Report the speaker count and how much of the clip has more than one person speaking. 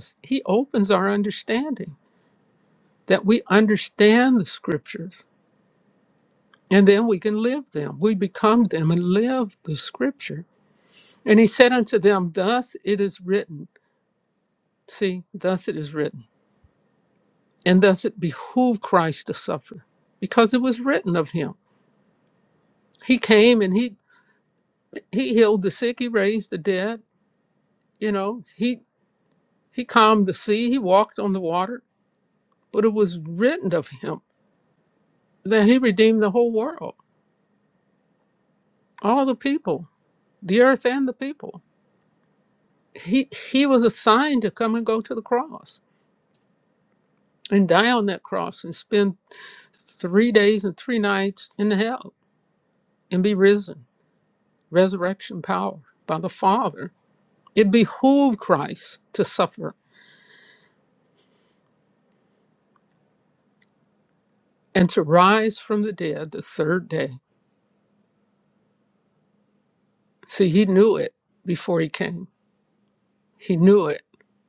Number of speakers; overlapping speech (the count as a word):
one, no overlap